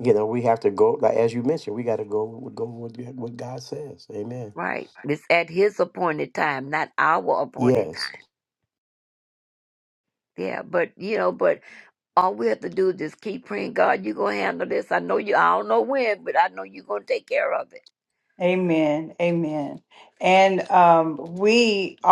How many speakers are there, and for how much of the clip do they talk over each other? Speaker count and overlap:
3, about 2%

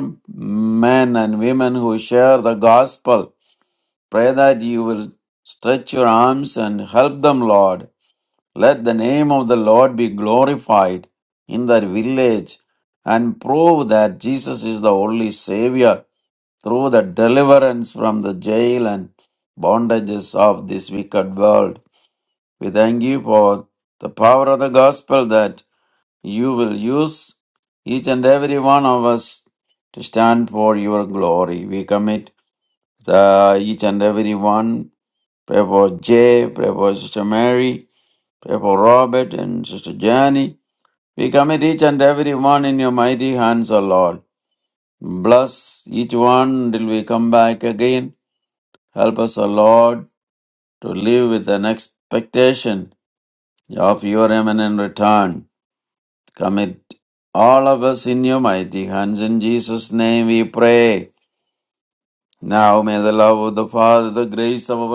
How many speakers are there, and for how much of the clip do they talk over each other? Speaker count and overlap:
1, no overlap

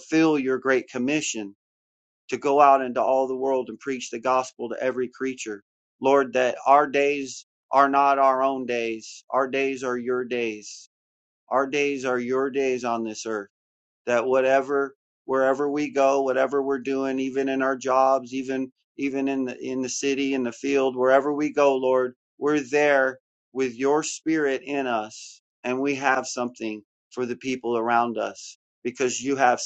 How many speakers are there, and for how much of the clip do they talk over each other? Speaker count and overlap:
1, no overlap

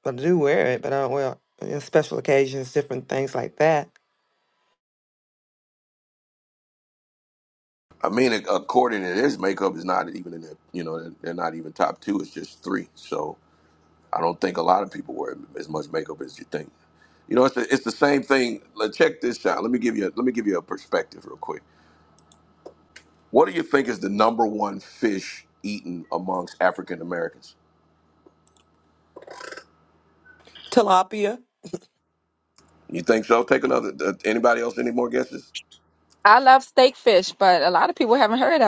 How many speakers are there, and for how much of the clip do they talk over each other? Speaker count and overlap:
3, no overlap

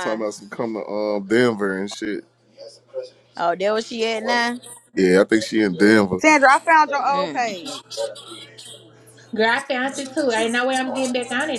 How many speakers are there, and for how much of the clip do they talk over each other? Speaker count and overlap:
4, about 6%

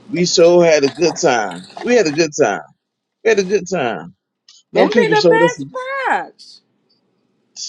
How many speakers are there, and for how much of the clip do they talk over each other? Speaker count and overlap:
2, about 12%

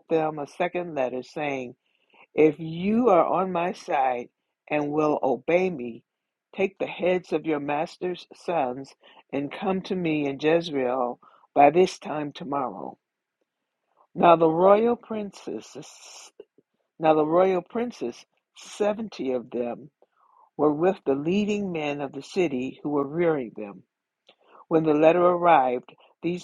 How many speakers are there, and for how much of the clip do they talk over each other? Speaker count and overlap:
1, no overlap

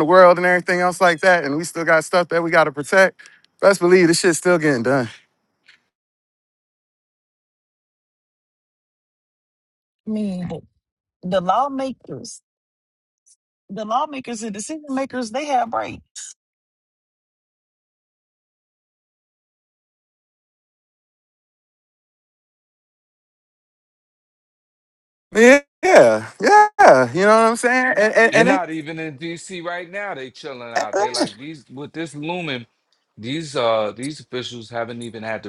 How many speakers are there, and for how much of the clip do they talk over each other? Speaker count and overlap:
3, about 2%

